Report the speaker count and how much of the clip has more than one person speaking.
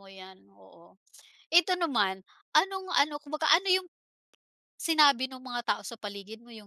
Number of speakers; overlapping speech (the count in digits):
1, no overlap